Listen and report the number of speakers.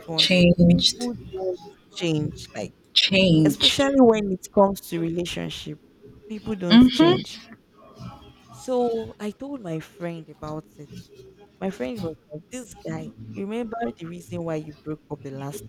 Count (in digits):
2